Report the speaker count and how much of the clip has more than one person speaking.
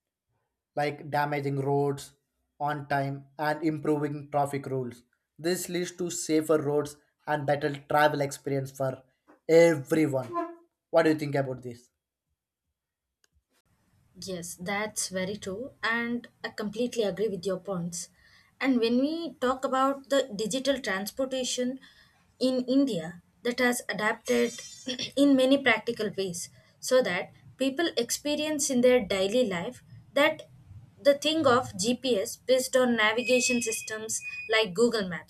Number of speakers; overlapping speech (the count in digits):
2, no overlap